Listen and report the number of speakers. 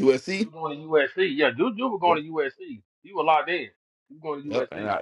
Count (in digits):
2